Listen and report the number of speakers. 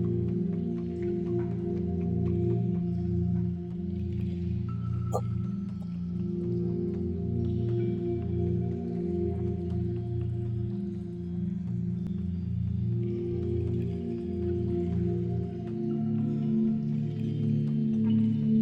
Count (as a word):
zero